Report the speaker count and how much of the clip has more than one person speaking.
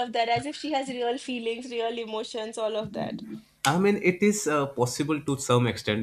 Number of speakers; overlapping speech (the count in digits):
2, no overlap